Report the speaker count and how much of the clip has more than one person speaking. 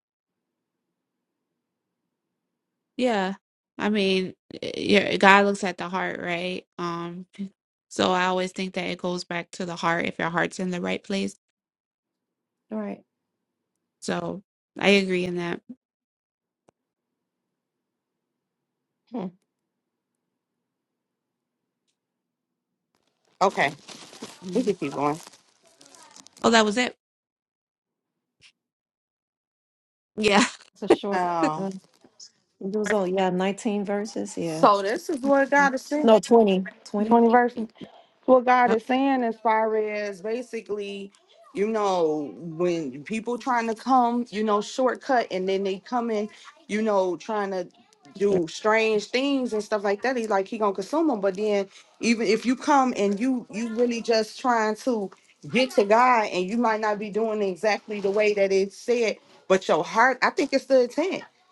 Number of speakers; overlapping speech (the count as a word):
three, about 2%